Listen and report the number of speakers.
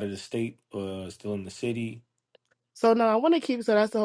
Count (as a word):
two